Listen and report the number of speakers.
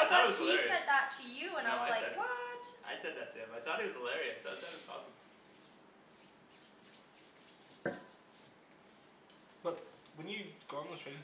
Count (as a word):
three